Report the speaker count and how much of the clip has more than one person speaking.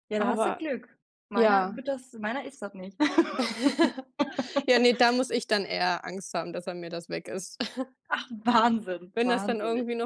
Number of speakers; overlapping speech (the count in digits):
2, about 15%